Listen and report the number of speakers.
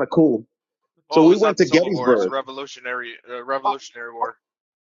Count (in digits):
2